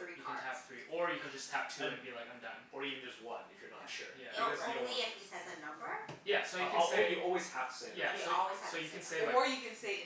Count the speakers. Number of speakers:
4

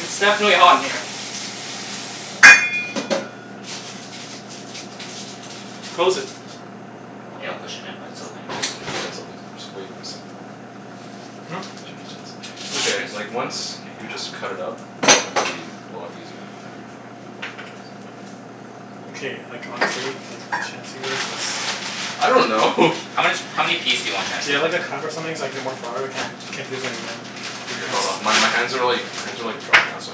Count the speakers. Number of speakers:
4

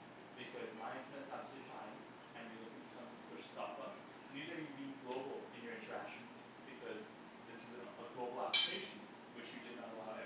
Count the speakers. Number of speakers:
1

